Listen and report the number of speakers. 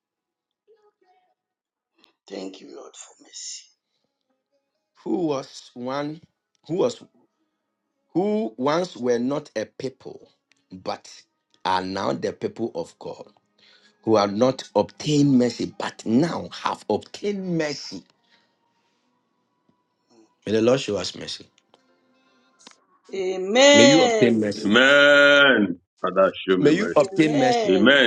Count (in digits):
3